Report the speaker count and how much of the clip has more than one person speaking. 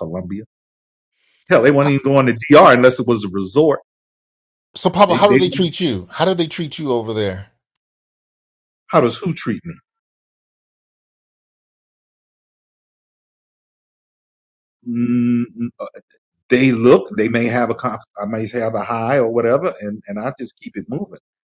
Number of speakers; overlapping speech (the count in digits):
2, about 2%